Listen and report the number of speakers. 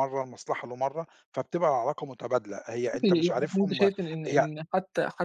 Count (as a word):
two